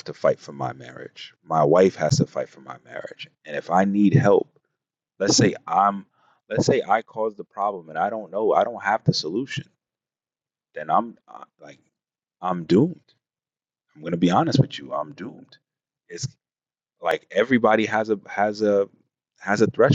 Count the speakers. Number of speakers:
one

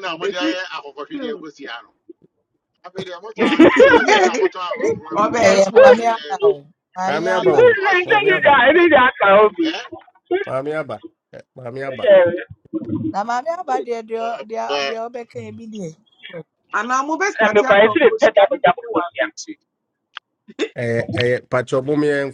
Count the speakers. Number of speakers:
five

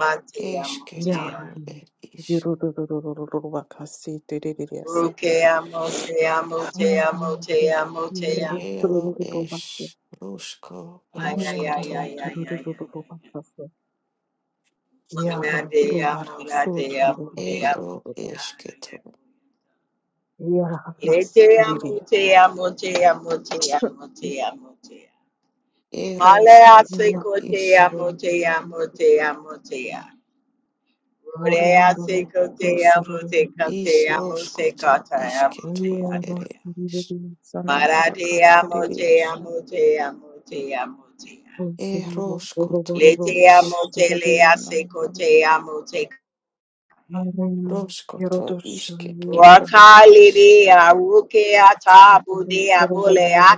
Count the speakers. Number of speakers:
three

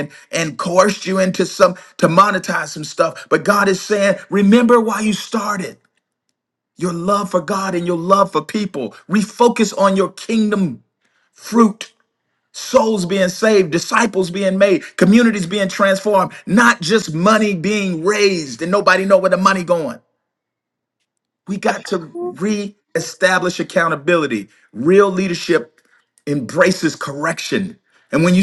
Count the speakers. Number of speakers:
one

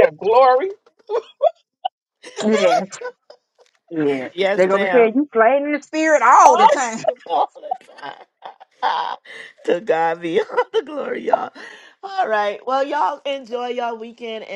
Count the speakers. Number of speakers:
three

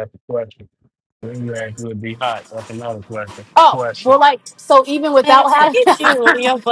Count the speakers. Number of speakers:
three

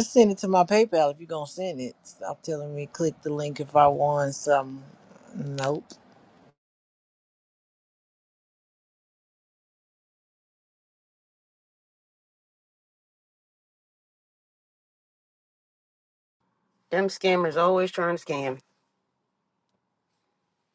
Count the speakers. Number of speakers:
two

